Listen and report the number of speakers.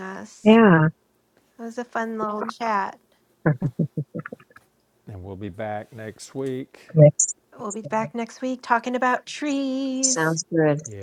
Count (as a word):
three